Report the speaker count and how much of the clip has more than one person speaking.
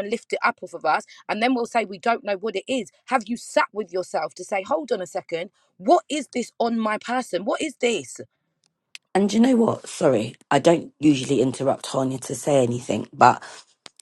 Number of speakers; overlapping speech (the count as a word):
two, no overlap